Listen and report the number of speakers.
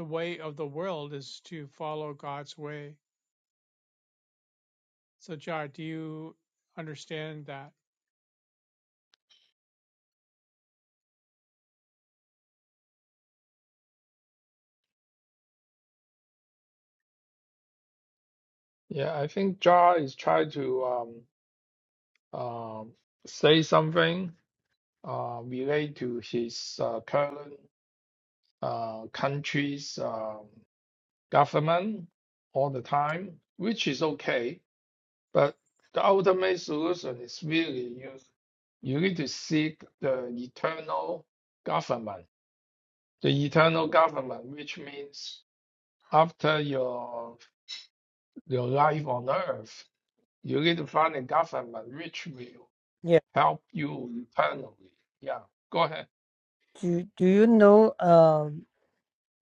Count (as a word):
three